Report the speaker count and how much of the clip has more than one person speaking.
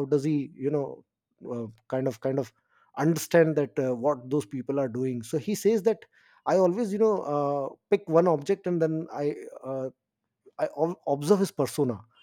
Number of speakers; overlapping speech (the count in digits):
1, no overlap